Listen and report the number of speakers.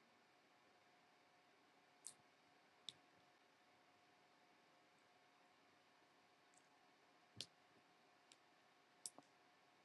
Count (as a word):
zero